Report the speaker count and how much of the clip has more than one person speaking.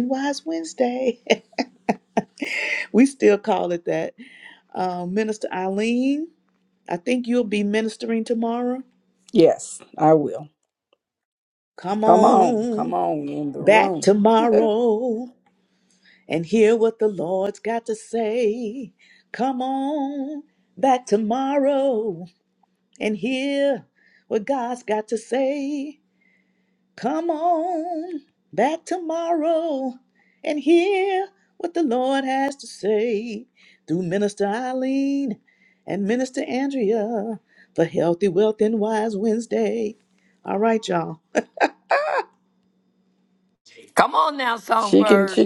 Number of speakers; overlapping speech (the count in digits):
3, about 4%